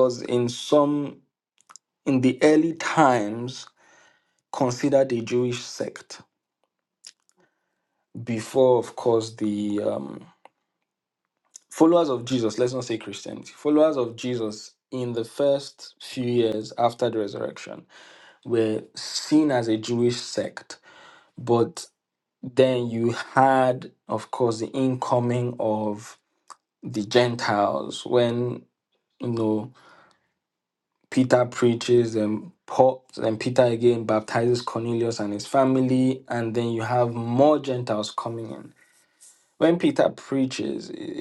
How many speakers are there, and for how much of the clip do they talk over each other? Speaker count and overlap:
1, no overlap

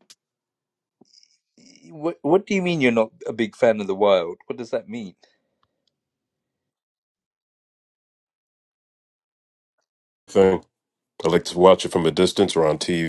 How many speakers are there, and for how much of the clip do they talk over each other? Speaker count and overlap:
2, no overlap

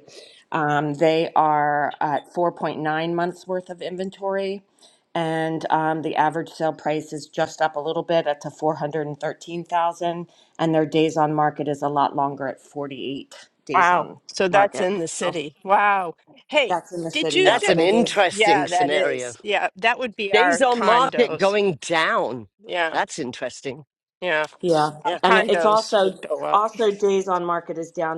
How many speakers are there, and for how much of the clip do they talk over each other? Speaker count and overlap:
3, about 20%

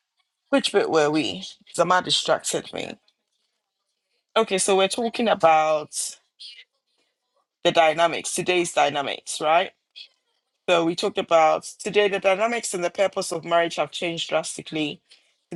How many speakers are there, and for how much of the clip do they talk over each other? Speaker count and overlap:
1, no overlap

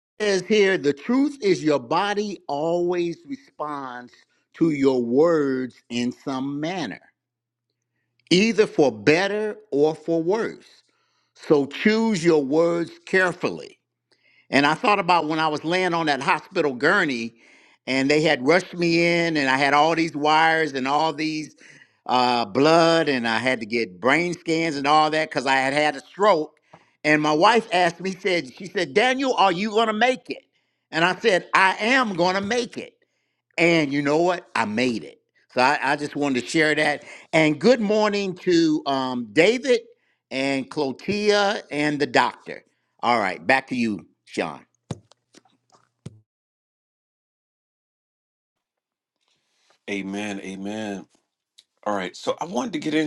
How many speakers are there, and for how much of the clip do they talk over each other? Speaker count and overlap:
2, no overlap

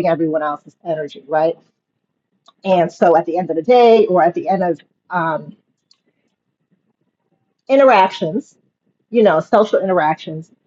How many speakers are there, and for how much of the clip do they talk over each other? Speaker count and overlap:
1, no overlap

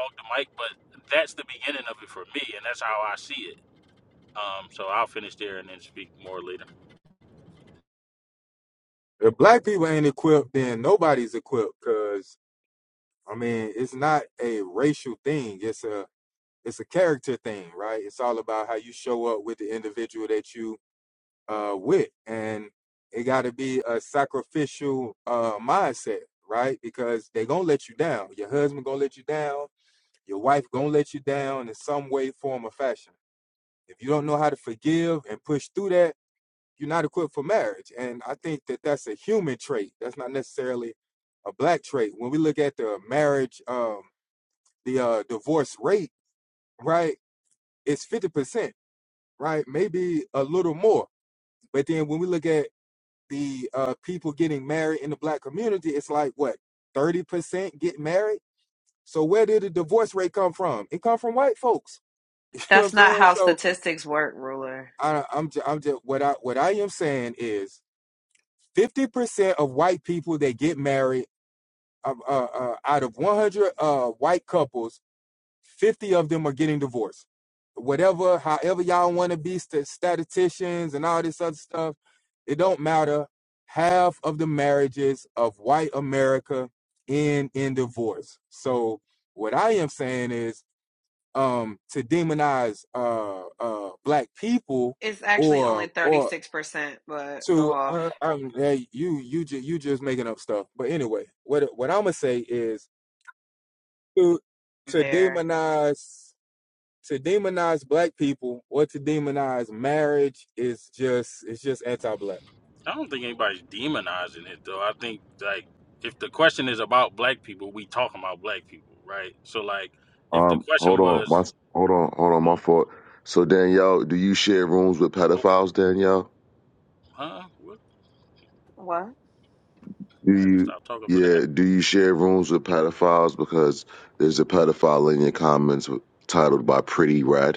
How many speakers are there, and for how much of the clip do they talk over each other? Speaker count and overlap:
4, about 3%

